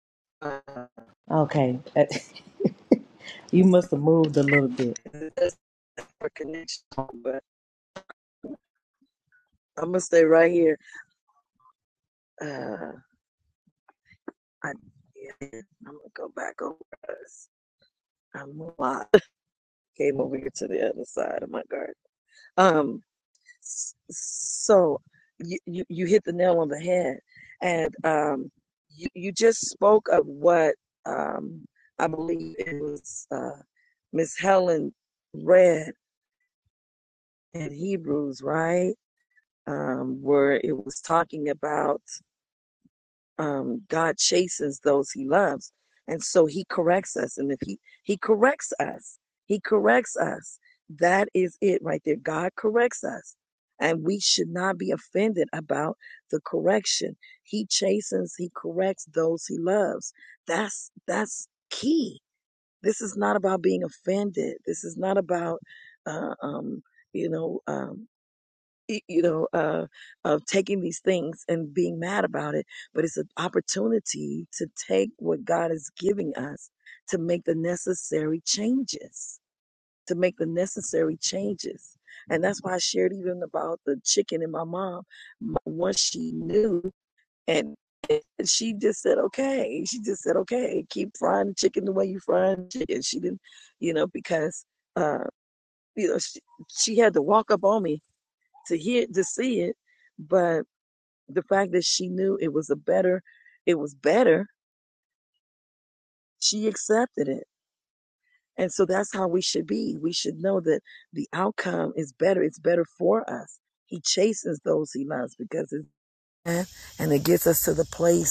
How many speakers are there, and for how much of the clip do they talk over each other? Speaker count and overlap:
two, no overlap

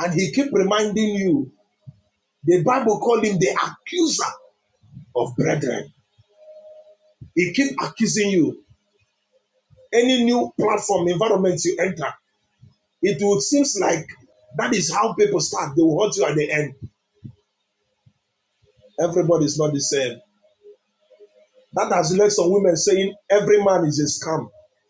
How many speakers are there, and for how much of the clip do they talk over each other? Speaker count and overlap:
one, no overlap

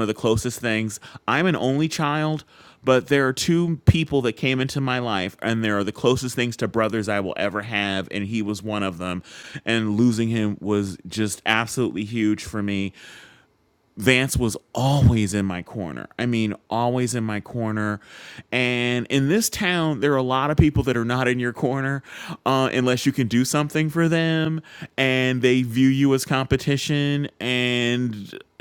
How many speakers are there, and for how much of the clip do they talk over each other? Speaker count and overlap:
one, no overlap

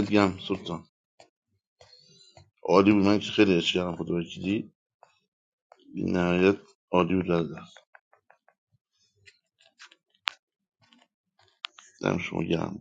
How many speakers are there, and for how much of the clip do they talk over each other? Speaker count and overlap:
one, no overlap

